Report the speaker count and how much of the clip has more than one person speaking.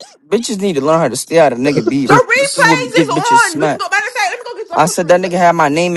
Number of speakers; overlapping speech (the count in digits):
2, about 39%